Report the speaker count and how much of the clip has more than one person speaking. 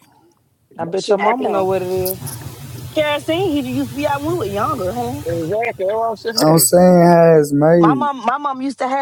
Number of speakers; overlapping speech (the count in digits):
4, about 18%